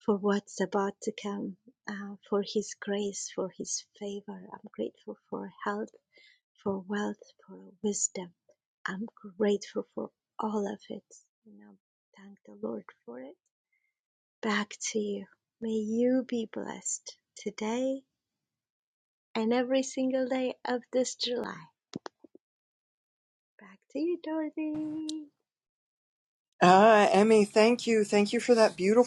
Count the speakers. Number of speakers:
2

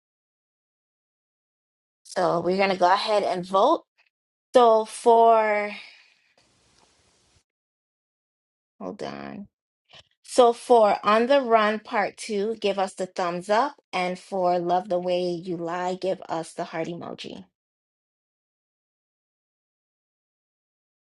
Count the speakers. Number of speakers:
1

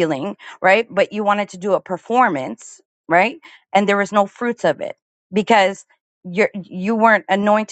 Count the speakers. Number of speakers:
1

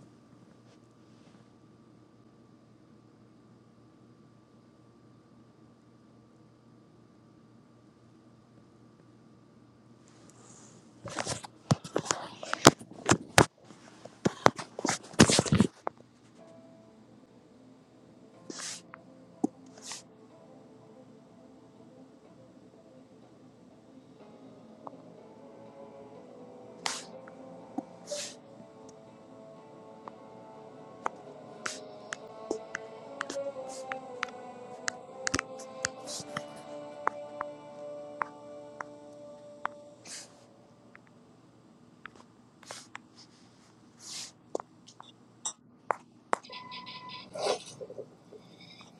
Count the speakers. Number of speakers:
0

